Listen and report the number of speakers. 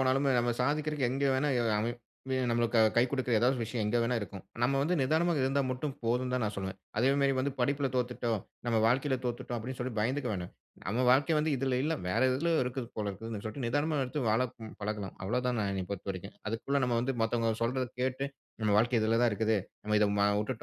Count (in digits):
1